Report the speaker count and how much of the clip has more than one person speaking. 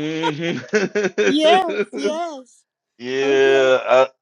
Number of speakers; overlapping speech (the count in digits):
2, about 11%